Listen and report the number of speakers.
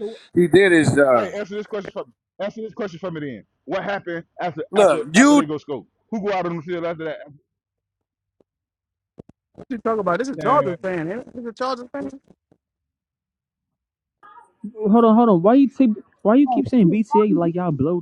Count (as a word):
four